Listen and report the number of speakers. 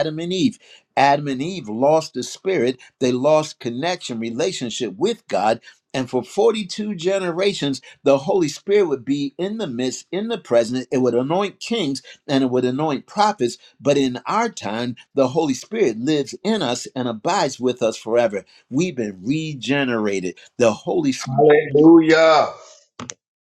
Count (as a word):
two